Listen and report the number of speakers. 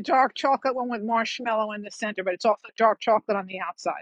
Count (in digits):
1